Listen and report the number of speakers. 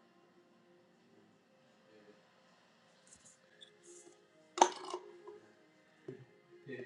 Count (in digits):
0